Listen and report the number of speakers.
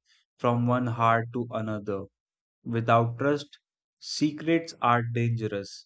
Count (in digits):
1